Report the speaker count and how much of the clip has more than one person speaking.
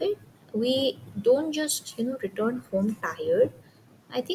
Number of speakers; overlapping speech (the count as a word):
one, no overlap